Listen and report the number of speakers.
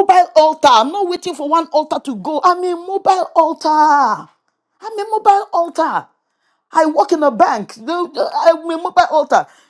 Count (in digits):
1